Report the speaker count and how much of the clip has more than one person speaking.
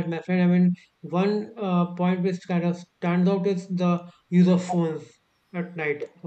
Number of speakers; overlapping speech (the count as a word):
one, no overlap